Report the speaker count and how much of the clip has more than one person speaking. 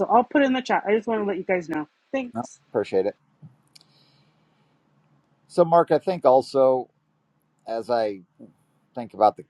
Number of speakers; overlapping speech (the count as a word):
two, no overlap